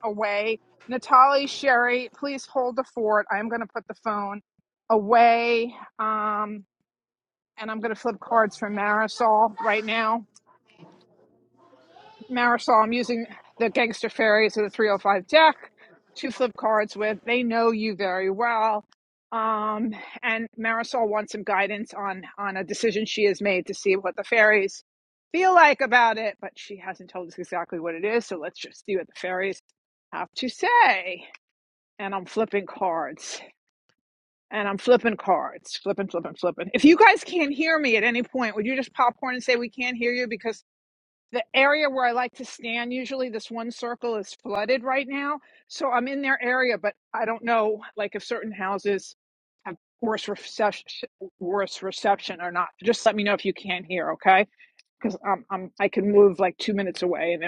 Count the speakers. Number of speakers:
1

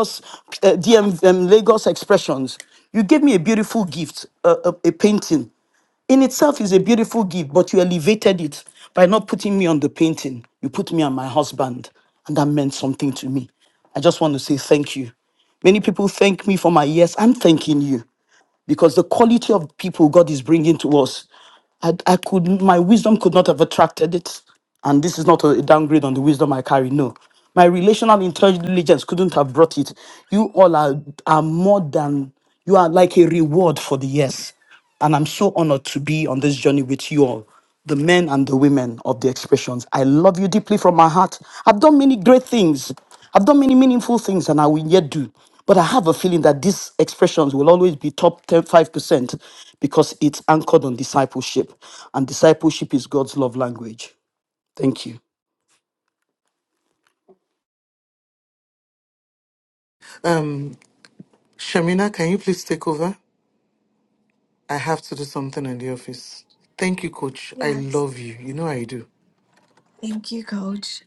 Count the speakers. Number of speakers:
3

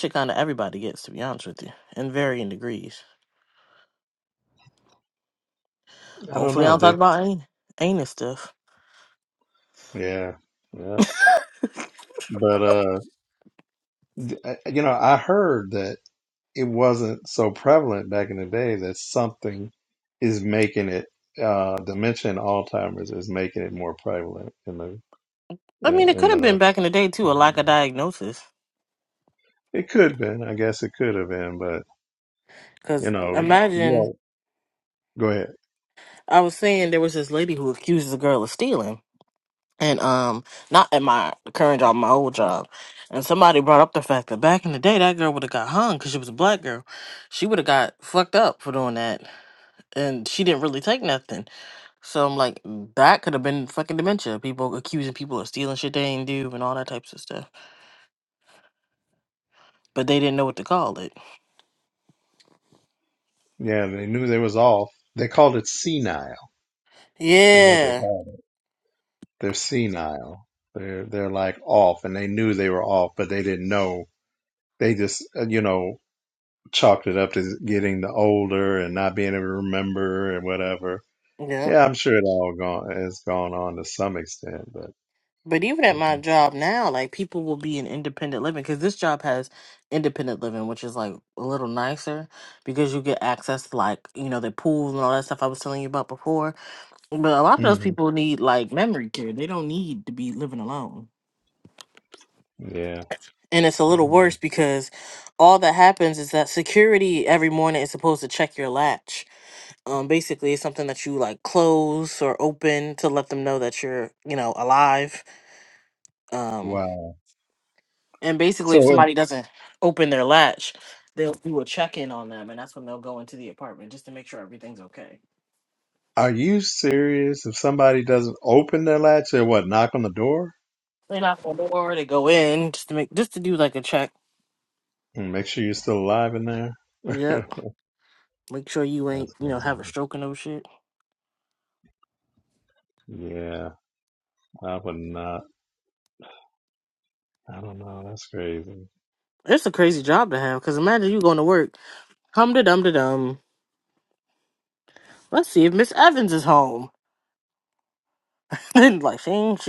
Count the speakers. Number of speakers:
2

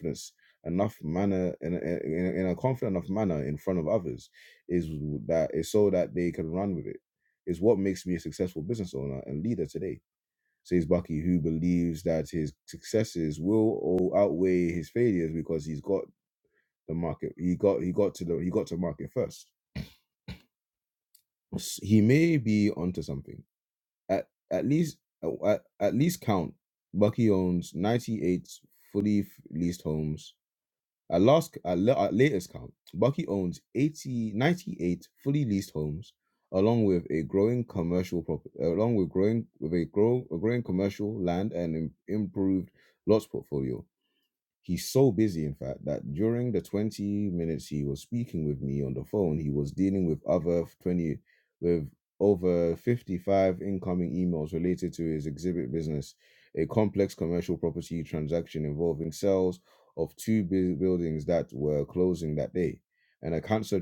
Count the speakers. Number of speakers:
1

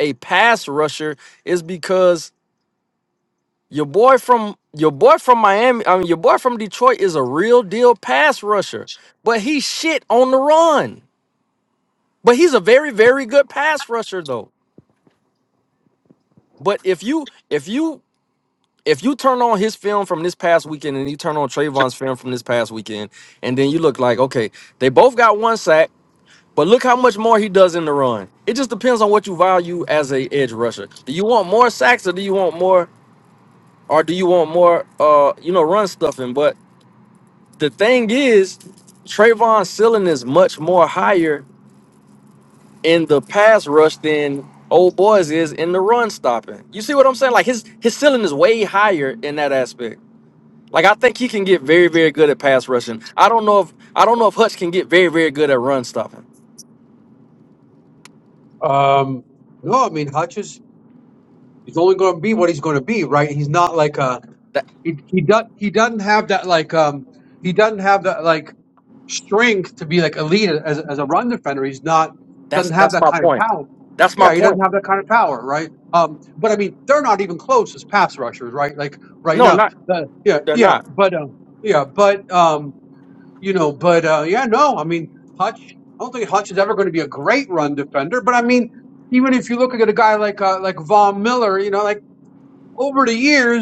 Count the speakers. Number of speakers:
2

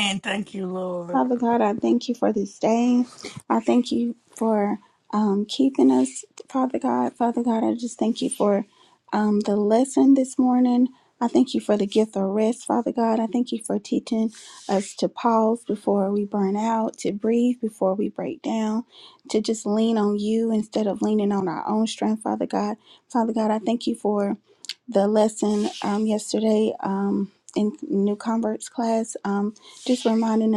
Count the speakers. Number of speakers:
2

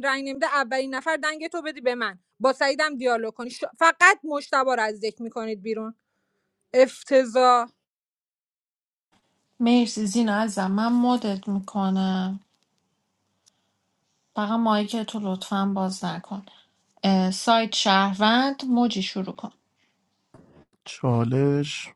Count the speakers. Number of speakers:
3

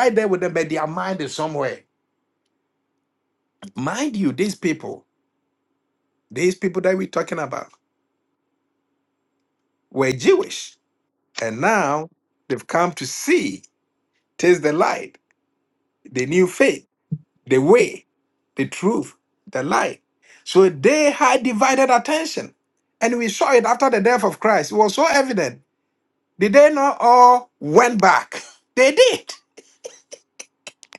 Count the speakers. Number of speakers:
1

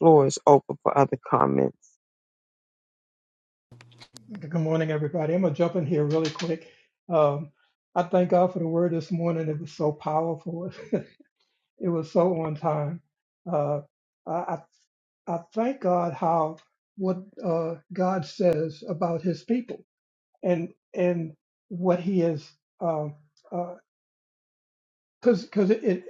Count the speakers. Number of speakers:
2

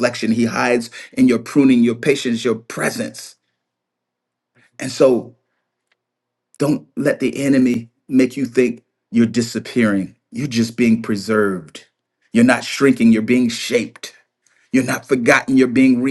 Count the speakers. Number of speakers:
1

